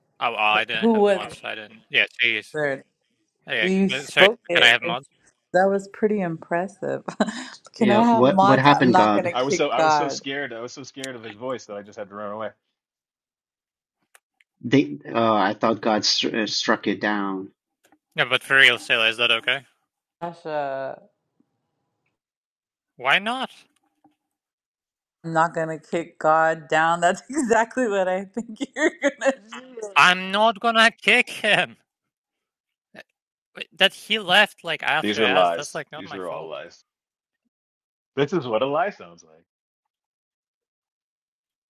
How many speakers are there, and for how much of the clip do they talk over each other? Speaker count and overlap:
four, about 14%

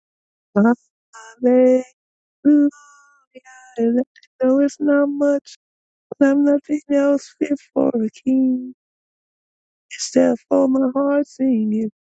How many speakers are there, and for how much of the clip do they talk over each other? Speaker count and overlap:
one, no overlap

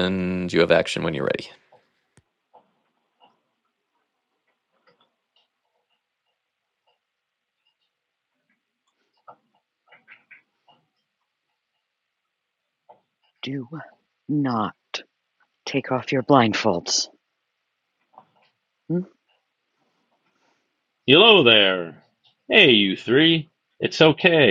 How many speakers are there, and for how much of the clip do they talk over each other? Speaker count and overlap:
three, no overlap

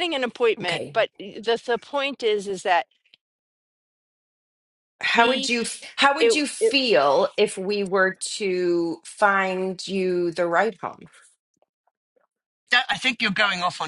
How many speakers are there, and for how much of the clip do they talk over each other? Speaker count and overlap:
three, about 9%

